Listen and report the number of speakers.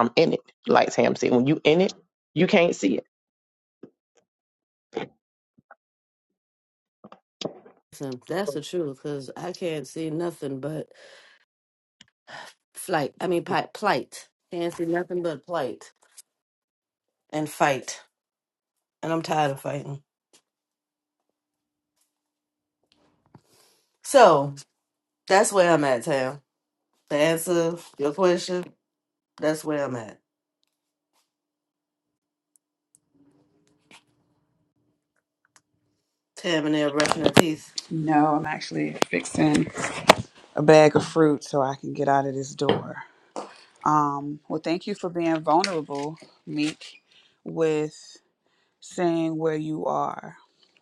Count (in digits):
3